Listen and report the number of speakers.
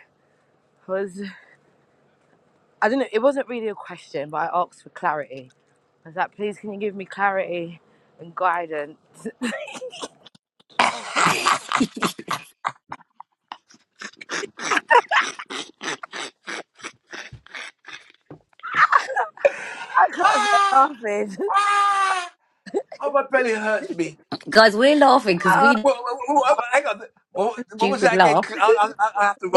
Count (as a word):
three